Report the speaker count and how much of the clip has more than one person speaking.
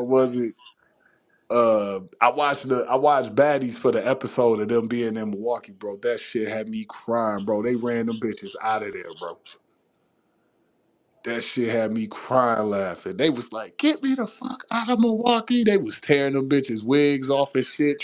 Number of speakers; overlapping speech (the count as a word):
one, no overlap